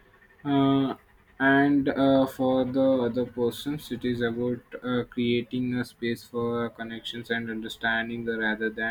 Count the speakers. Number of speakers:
one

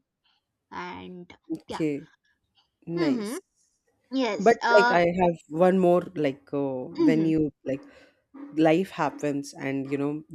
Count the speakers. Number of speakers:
two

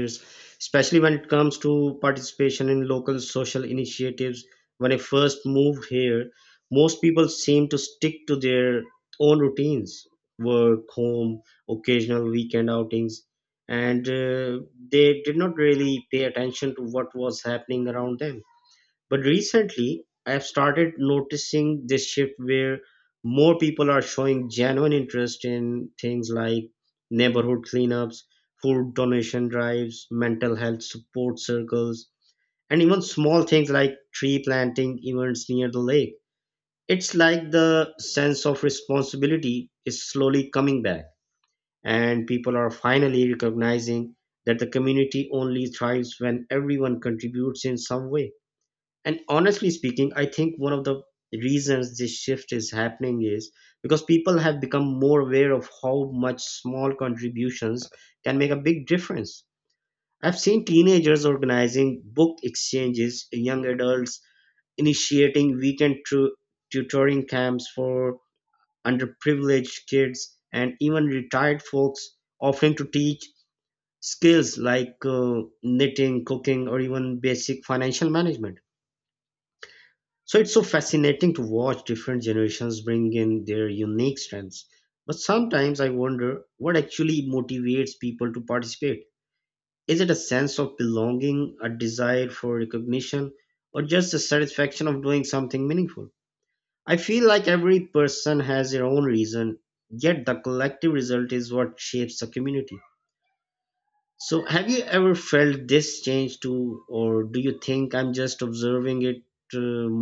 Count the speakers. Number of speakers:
one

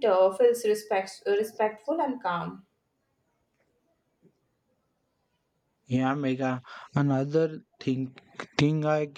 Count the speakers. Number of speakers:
two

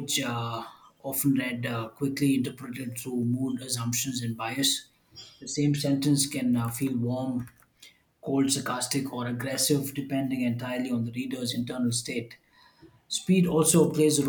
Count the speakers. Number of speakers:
one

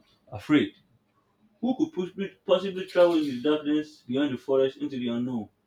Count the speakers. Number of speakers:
one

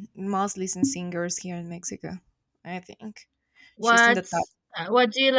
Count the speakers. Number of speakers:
two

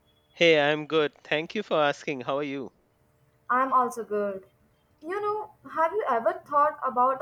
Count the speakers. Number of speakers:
two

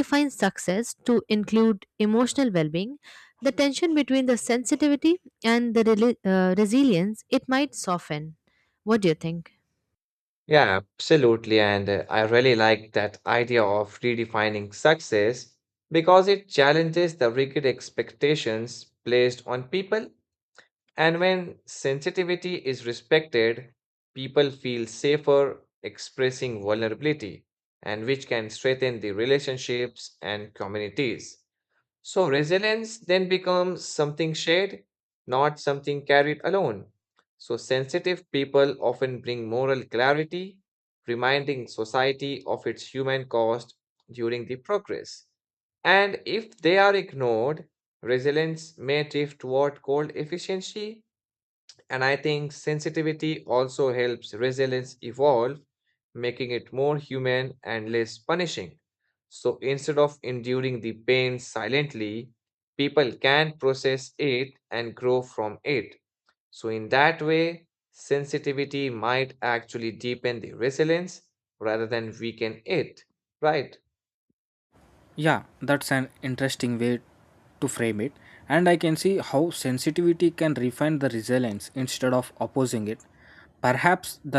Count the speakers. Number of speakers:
three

